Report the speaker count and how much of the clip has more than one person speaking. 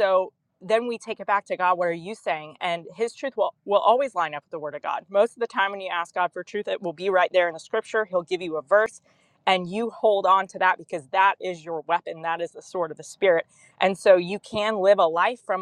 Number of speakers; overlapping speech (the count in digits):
1, no overlap